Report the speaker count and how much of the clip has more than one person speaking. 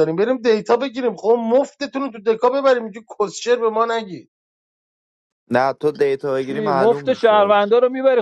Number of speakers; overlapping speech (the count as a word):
three, about 13%